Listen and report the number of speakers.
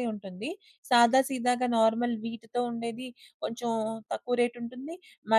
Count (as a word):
one